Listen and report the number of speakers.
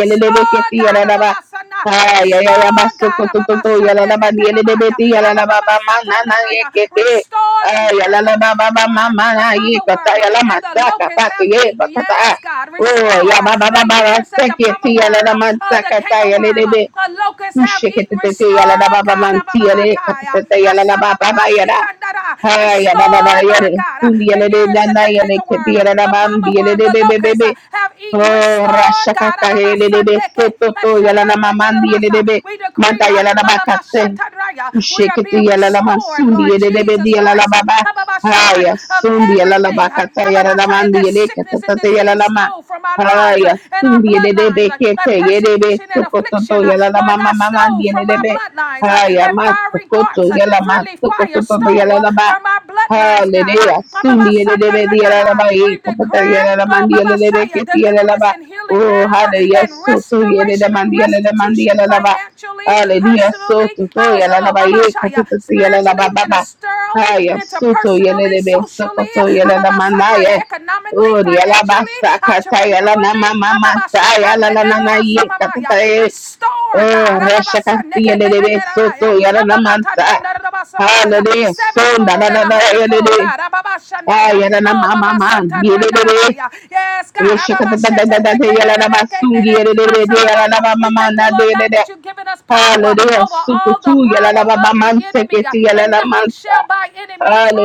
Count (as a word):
two